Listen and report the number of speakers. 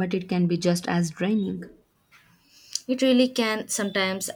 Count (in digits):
2